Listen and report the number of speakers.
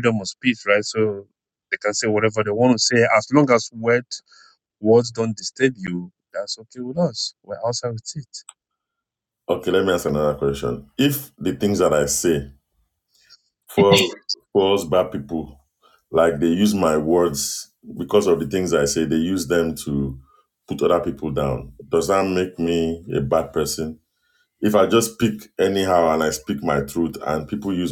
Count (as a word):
two